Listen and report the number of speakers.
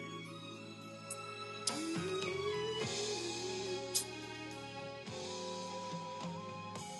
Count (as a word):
zero